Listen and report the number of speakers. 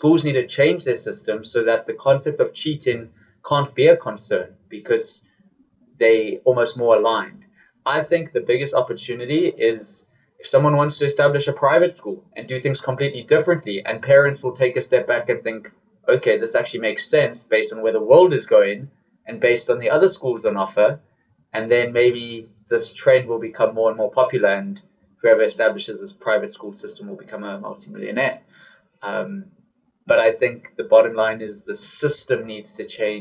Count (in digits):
1